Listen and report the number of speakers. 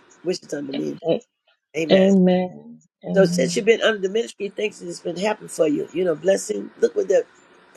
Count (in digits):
2